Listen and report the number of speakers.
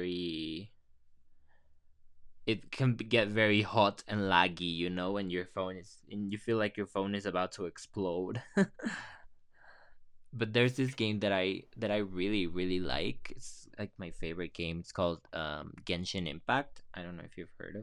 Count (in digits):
1